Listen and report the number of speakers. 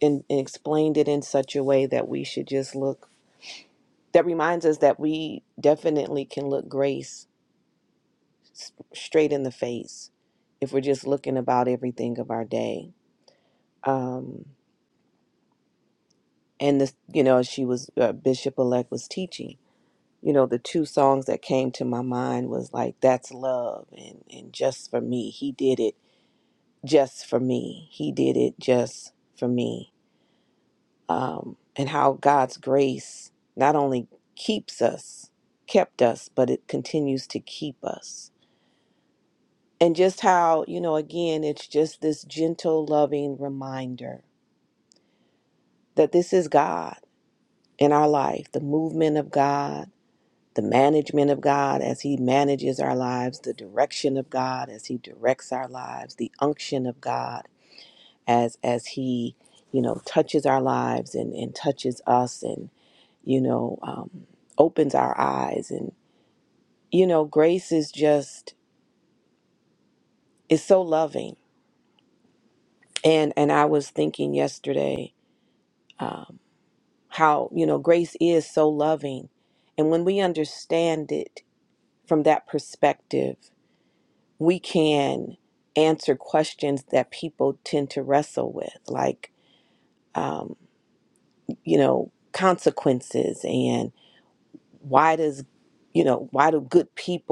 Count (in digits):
1